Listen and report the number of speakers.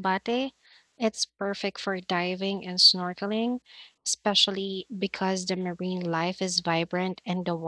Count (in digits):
1